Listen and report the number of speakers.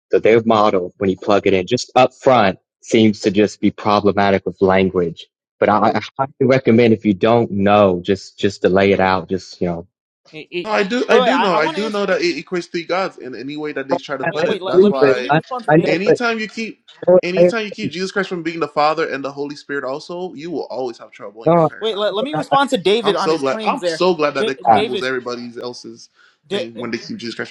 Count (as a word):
three